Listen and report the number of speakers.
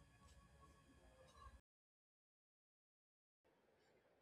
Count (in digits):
0